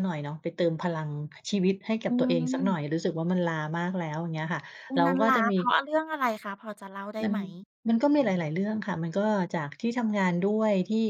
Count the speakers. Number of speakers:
2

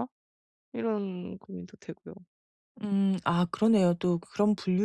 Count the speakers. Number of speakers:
2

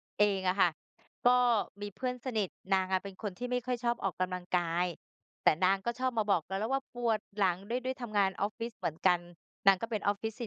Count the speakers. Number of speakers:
1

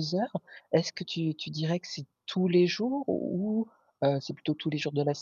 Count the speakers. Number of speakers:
1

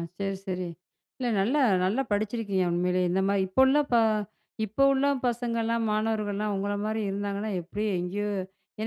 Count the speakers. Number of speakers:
1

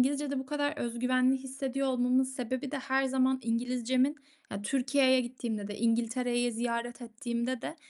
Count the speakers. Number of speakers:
1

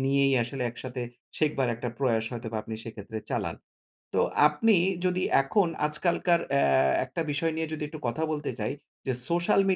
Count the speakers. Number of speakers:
1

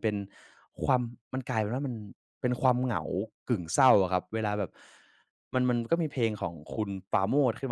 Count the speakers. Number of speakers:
1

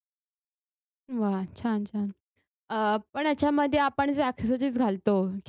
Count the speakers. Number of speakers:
1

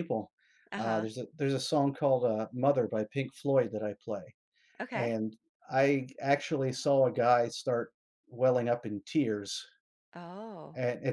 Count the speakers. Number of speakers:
2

